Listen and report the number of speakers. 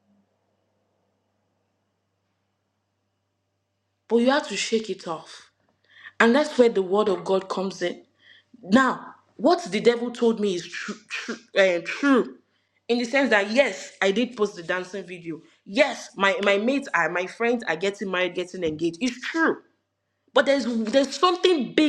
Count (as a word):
one